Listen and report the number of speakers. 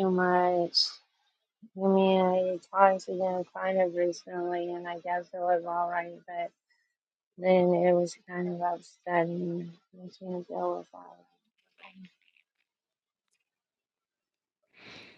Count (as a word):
one